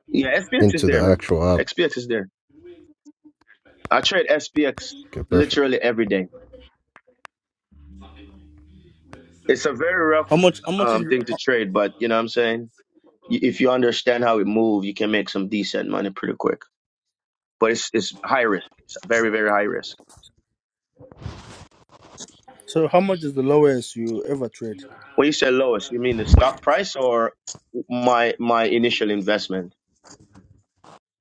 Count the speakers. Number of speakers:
three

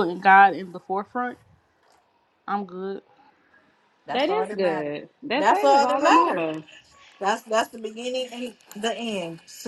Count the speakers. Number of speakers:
three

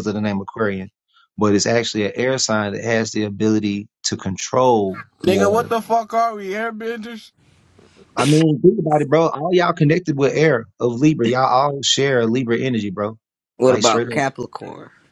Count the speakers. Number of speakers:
three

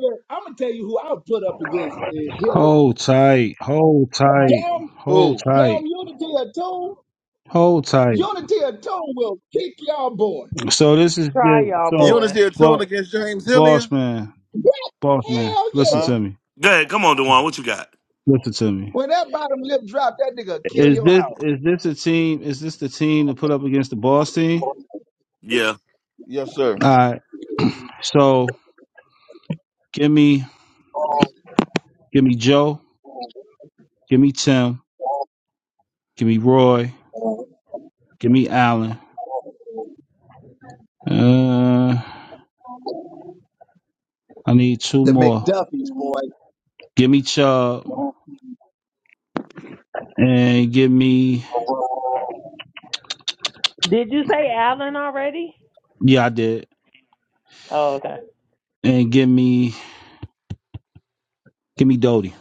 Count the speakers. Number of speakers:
five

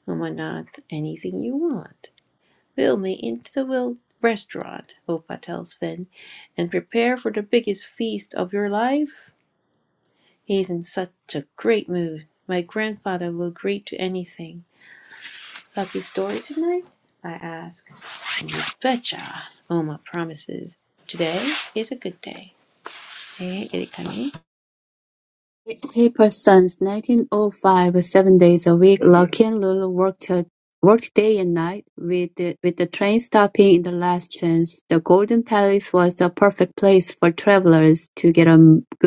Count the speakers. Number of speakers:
two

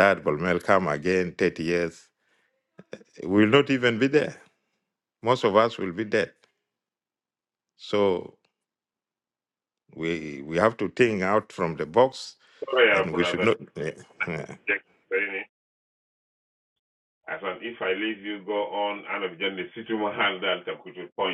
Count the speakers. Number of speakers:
two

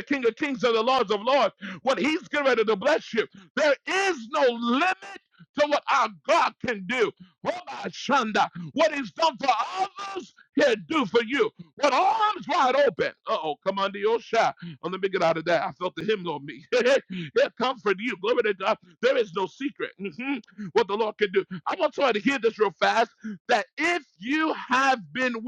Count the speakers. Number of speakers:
one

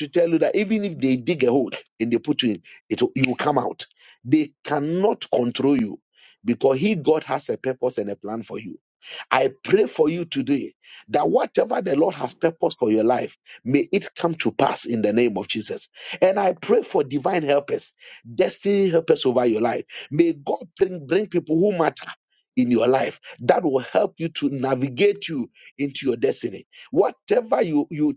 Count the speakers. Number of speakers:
one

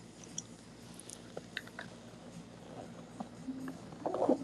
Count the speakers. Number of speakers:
zero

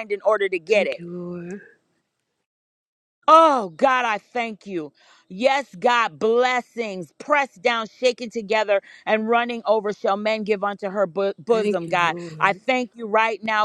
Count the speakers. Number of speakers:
two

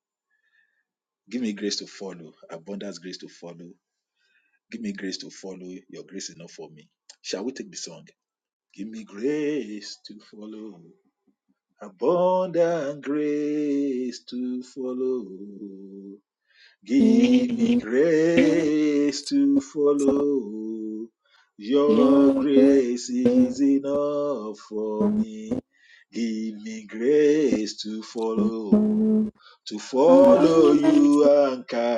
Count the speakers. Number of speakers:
two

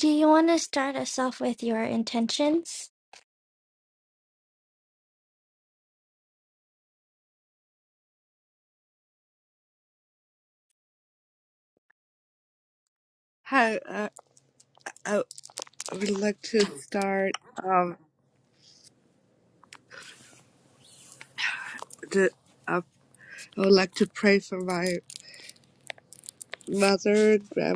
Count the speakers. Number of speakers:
two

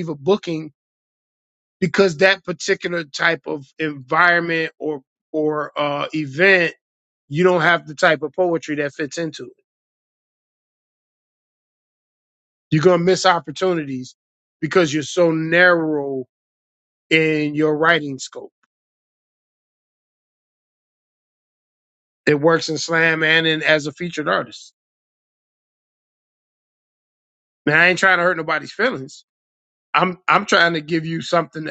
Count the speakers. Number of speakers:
one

